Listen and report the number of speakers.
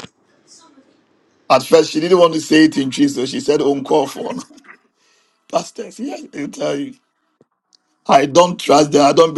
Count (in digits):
1